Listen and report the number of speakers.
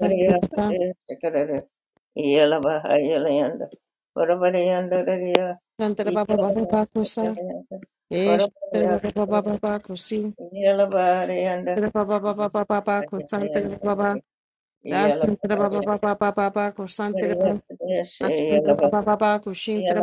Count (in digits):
2